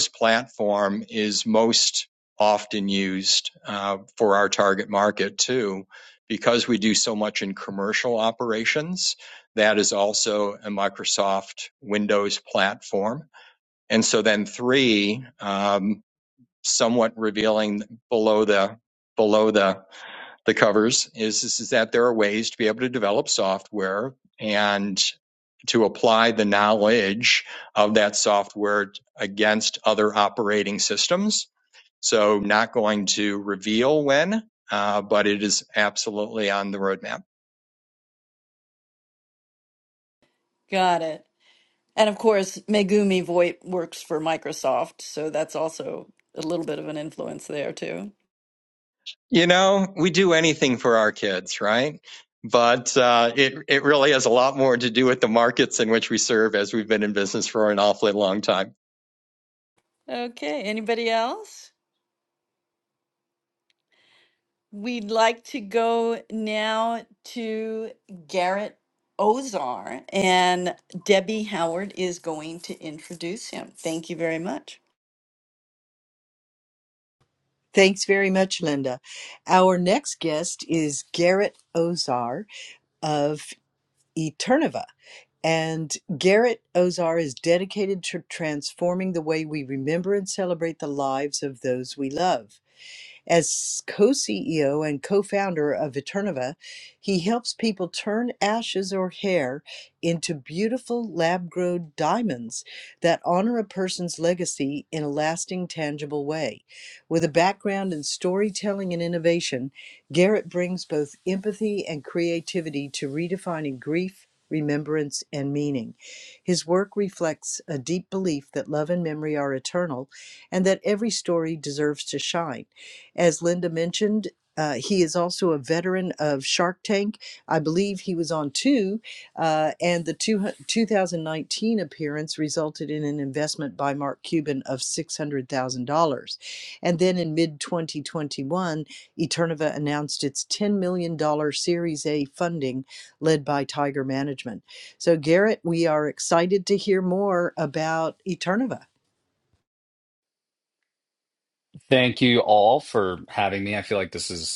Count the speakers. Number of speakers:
4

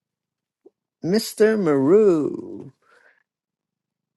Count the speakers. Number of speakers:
1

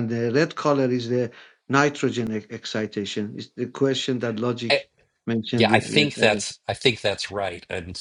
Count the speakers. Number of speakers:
2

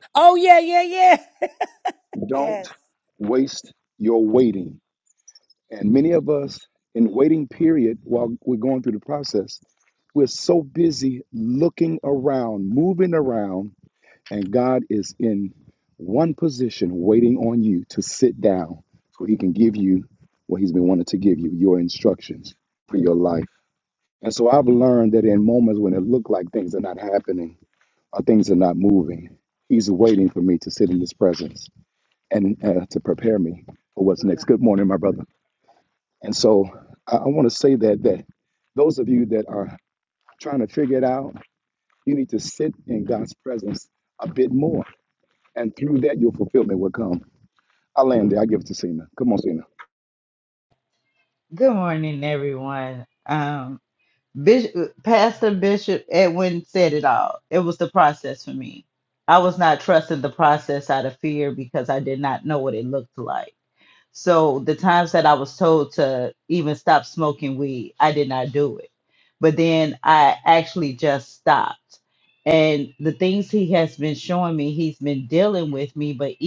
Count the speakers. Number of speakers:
3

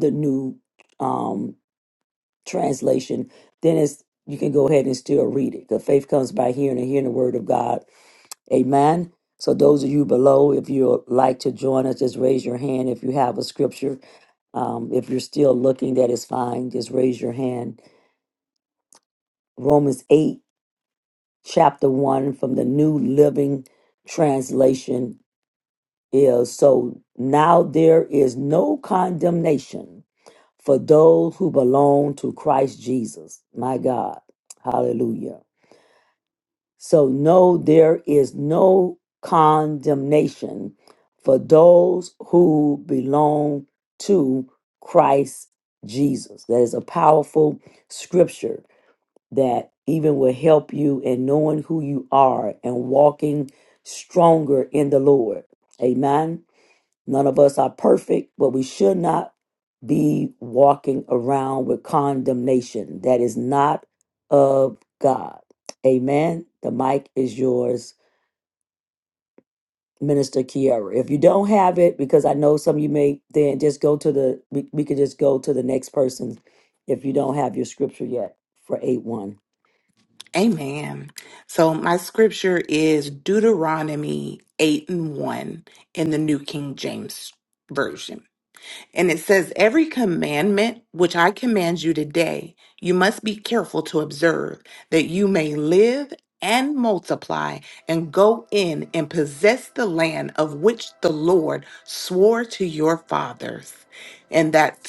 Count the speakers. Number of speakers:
2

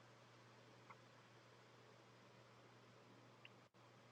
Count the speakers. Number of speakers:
0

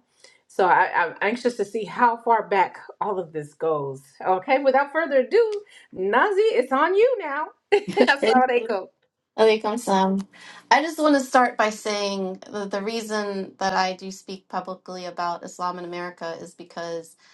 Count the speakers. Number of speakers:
2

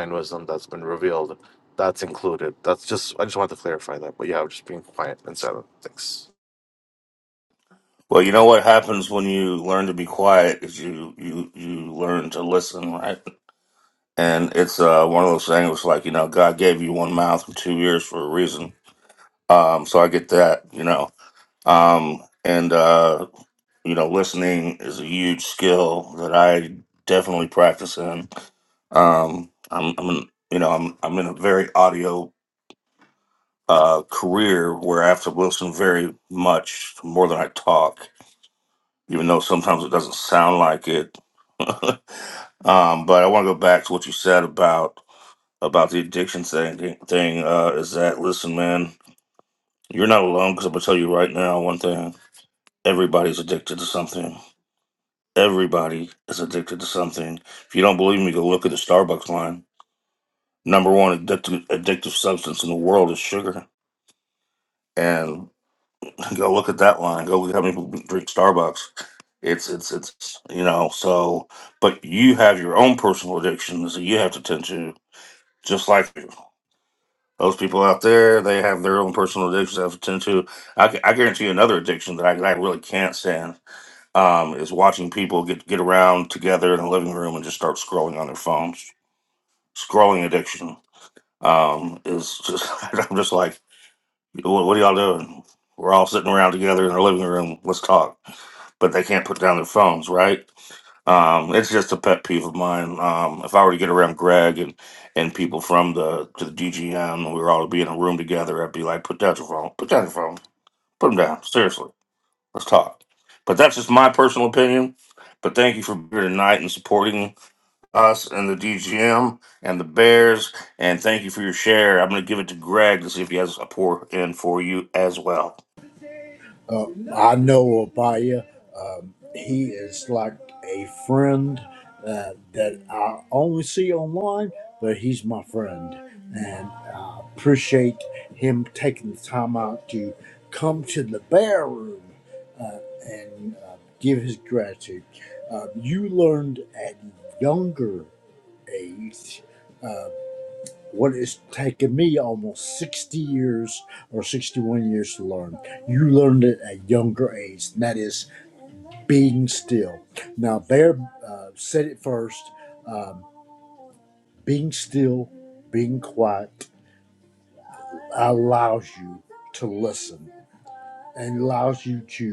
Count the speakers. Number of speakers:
3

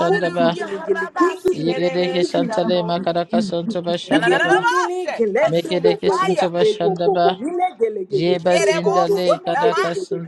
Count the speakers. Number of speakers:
3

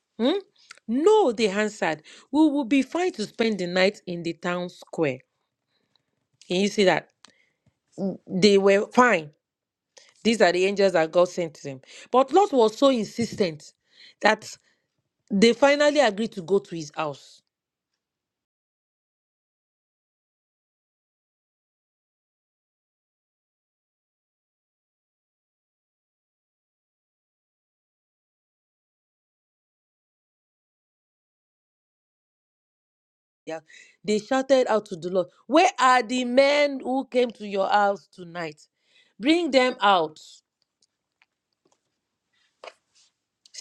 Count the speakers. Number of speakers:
1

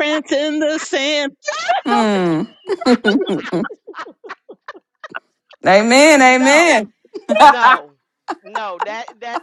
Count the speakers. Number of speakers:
3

